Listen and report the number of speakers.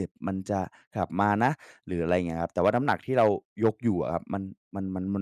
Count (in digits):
1